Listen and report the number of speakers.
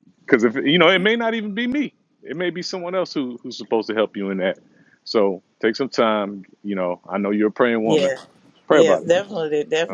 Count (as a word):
two